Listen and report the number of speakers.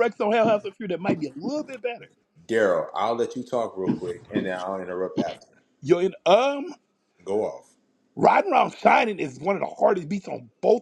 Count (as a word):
two